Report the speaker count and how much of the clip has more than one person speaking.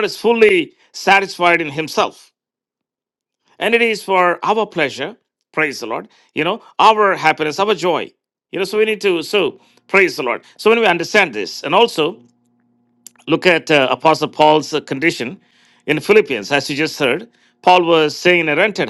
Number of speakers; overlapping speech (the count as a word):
one, no overlap